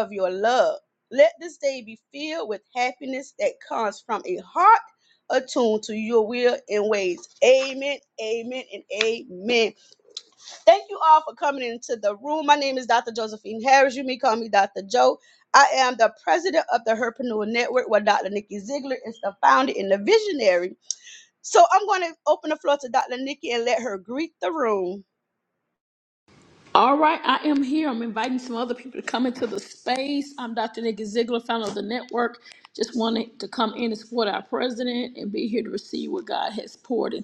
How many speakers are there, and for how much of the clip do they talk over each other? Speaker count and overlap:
two, no overlap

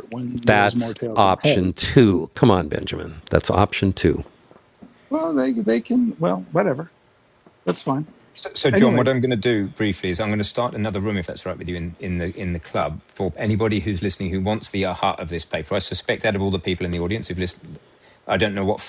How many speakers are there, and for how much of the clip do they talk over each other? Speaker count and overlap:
three, about 9%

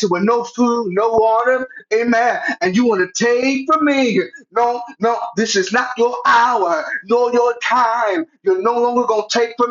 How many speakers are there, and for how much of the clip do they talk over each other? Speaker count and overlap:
one, no overlap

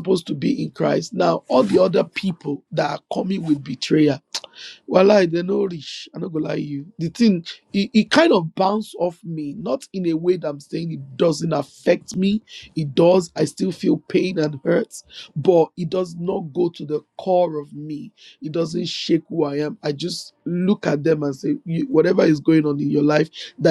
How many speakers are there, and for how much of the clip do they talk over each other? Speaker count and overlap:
one, no overlap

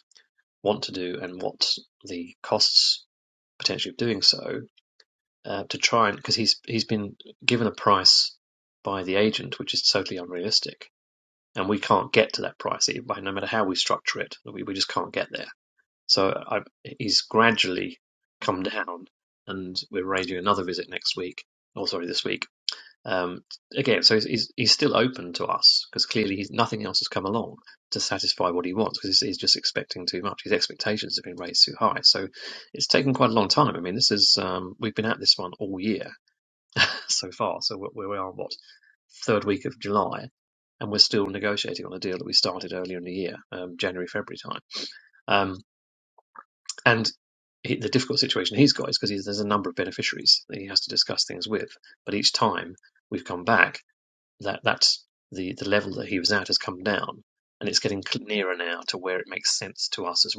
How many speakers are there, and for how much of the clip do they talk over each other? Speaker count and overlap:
one, no overlap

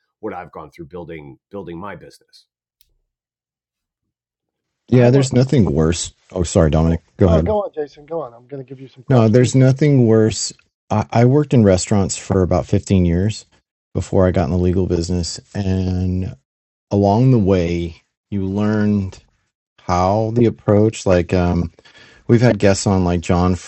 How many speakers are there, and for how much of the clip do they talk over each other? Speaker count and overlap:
three, about 7%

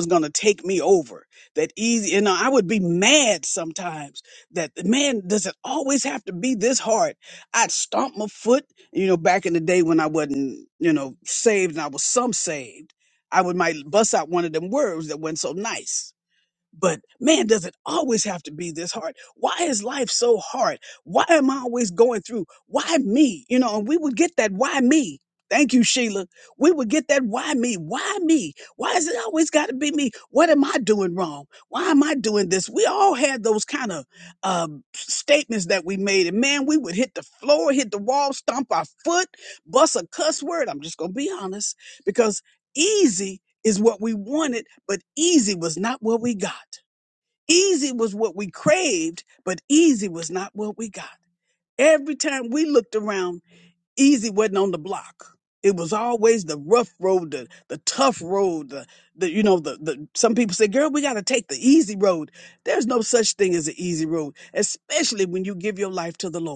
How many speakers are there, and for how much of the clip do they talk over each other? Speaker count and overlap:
one, no overlap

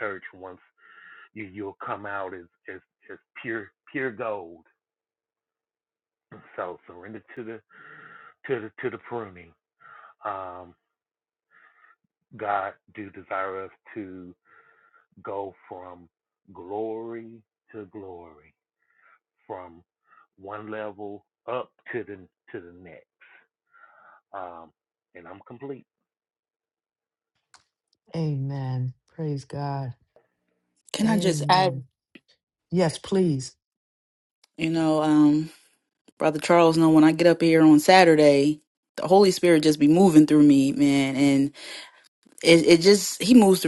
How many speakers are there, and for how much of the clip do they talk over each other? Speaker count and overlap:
three, about 2%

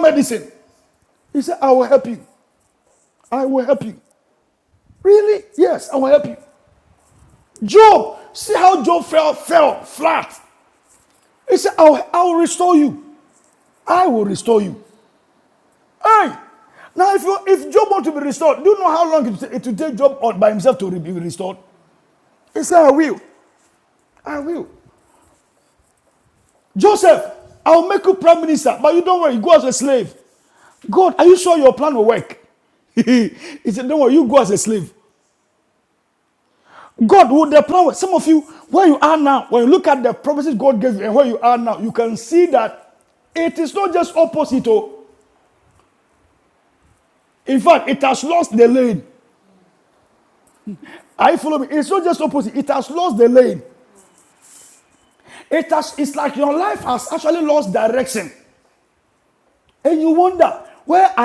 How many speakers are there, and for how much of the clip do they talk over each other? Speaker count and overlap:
one, no overlap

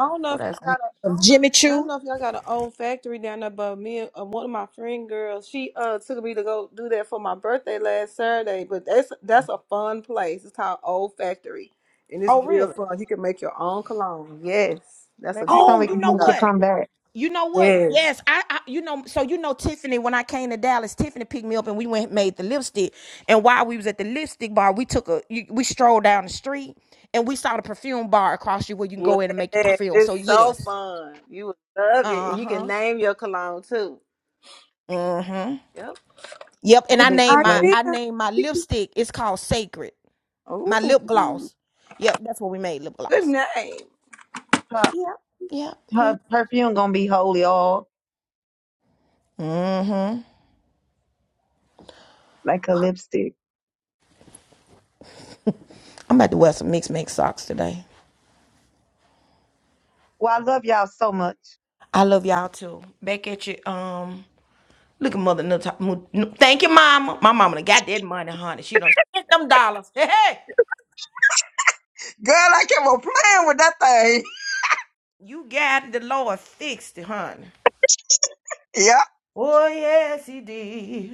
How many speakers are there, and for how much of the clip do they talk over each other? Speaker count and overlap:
four, about 8%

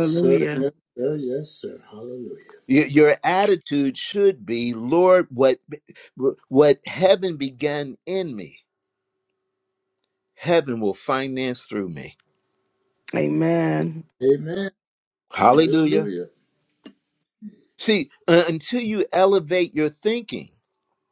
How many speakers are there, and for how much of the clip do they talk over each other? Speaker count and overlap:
three, about 6%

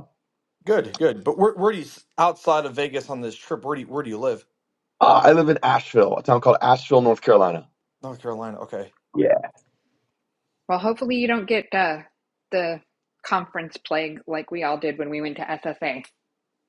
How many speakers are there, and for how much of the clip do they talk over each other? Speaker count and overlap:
three, no overlap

